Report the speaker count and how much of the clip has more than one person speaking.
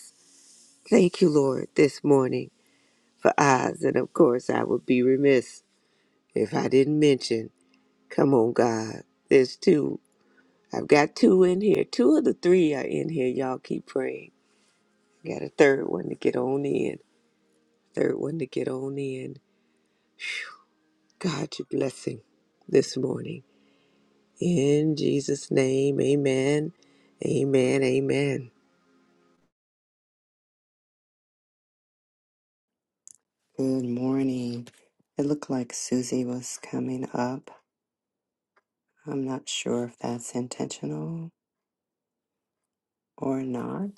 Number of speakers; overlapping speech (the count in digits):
2, no overlap